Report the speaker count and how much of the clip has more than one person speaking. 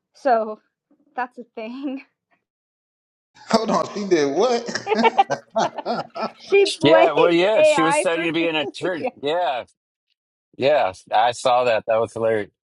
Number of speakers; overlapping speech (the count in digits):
3, about 12%